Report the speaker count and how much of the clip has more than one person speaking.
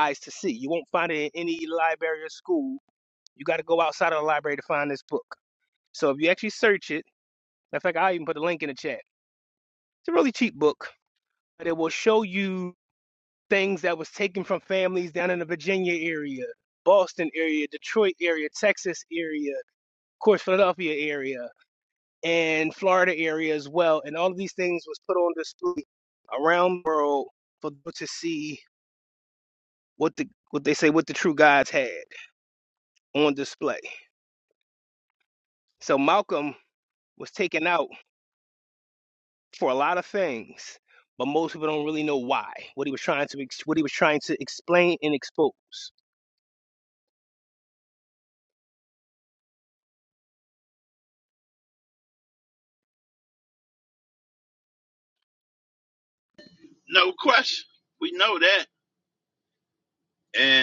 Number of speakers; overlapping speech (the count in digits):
2, no overlap